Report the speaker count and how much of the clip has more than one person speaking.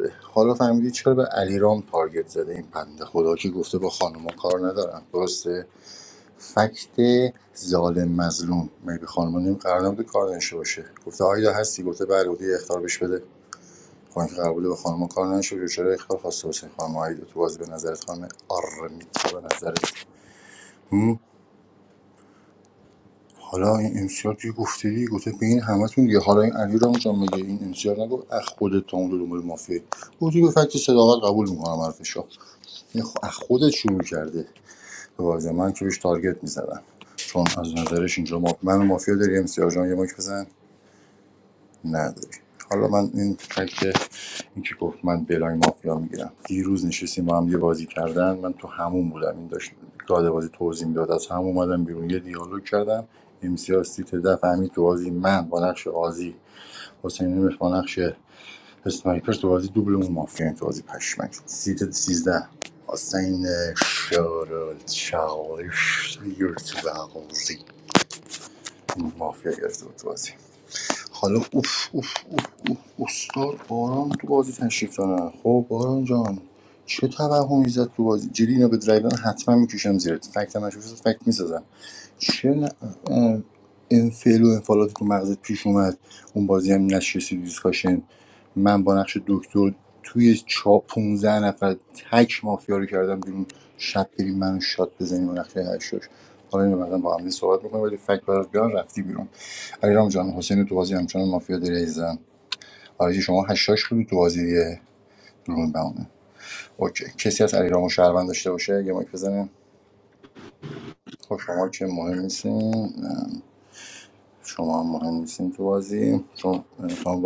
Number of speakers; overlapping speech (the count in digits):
1, no overlap